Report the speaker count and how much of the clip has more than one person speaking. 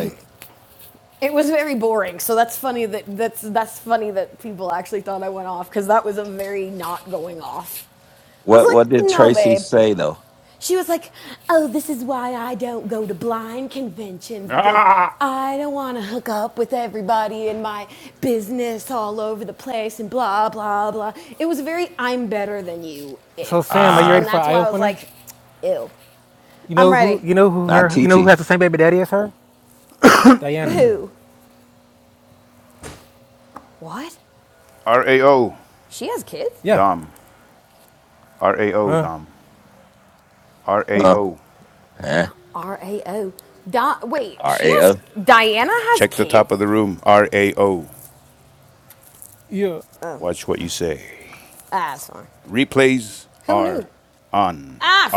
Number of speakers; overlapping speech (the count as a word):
four, about 11%